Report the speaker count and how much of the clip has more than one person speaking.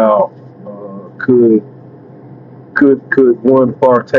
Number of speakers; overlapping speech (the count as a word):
one, no overlap